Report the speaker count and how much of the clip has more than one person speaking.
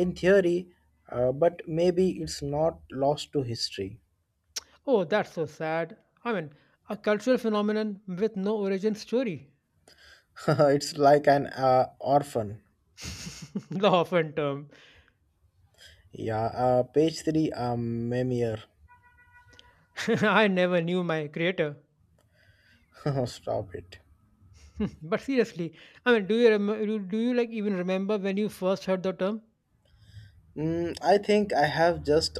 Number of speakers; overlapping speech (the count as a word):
two, no overlap